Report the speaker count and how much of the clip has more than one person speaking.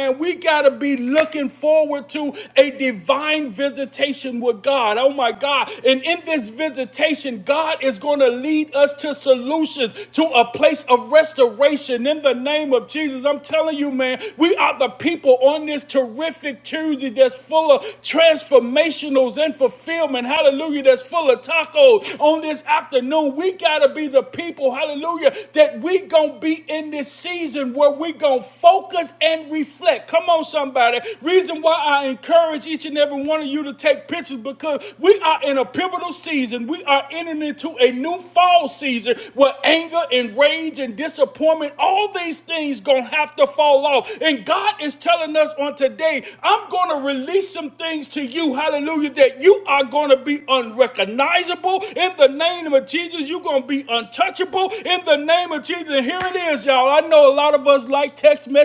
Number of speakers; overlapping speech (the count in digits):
1, no overlap